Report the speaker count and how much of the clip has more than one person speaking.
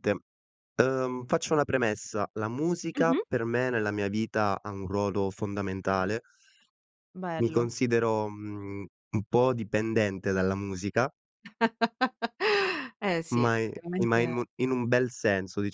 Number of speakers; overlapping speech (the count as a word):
two, about 11%